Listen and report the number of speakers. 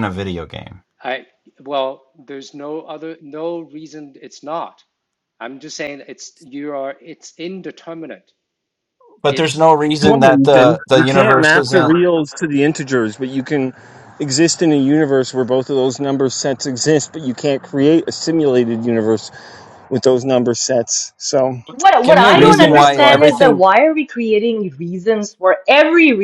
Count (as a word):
four